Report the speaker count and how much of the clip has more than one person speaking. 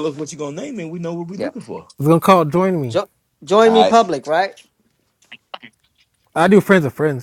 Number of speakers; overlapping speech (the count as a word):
three, about 6%